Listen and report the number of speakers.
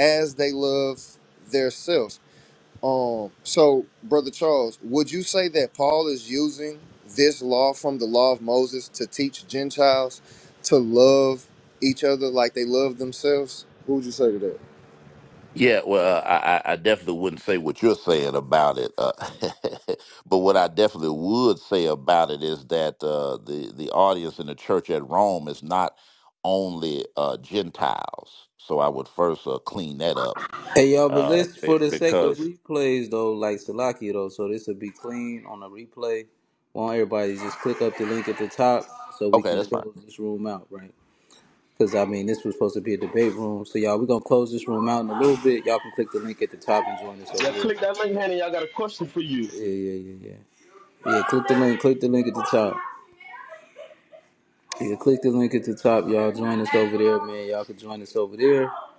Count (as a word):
four